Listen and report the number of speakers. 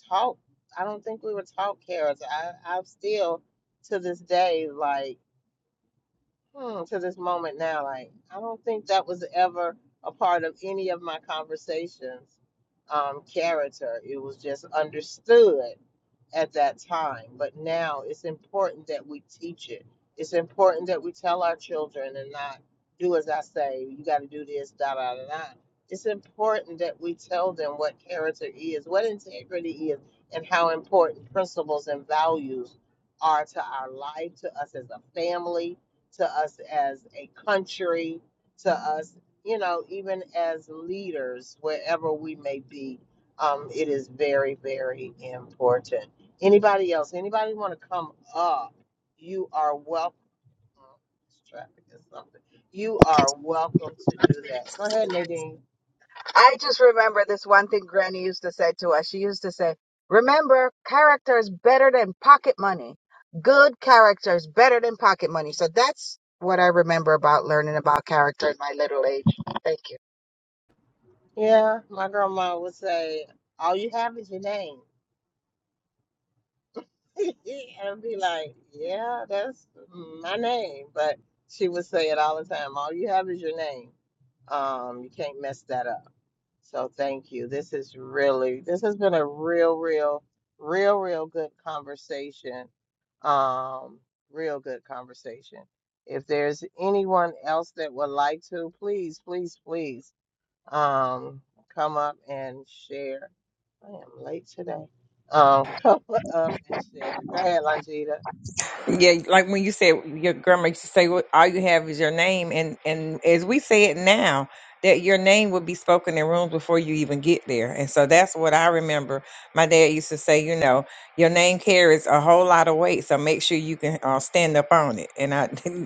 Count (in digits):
3